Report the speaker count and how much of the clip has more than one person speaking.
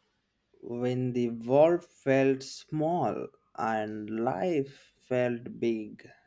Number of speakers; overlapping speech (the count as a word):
one, no overlap